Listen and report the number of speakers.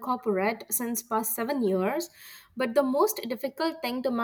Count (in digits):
1